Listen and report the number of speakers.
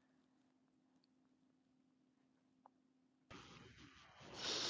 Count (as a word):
zero